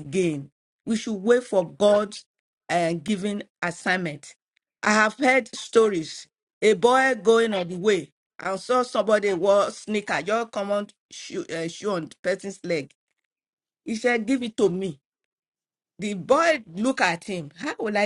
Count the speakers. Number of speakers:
one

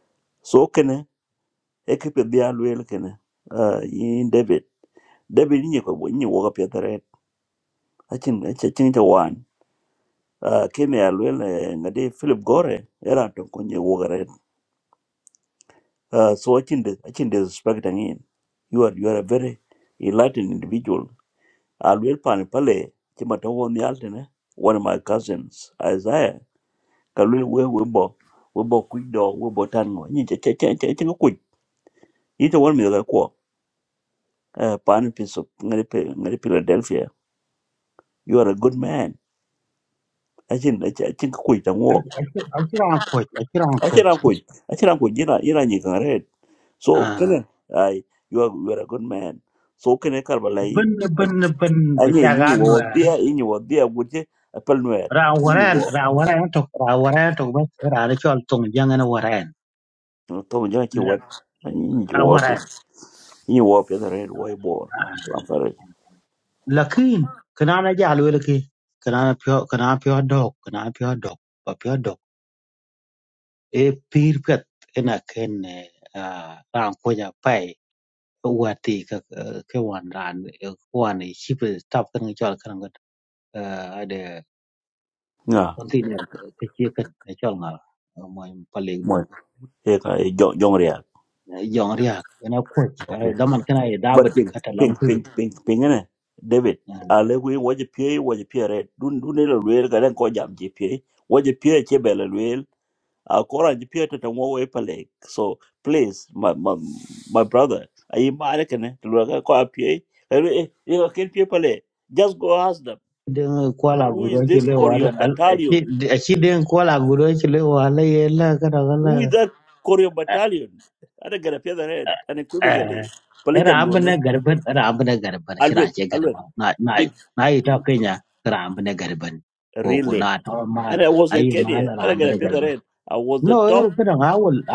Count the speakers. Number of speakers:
two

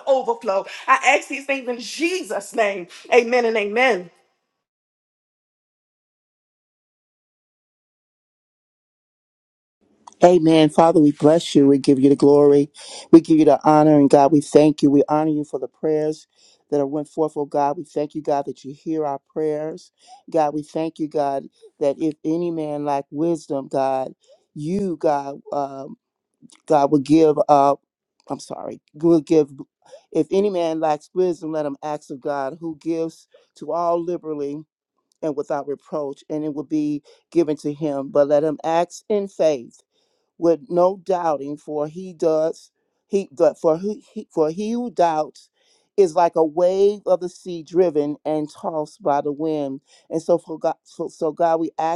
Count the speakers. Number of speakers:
two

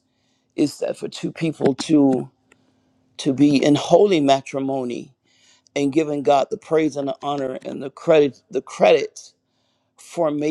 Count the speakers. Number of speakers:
one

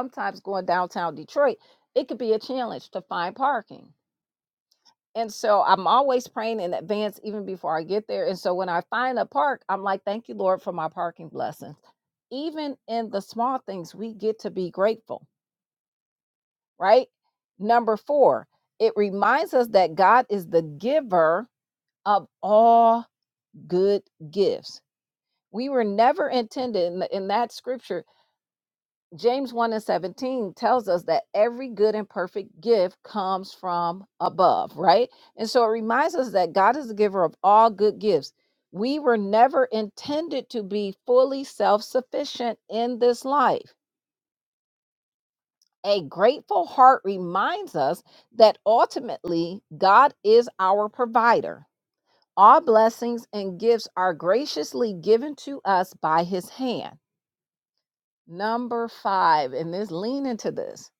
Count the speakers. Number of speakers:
one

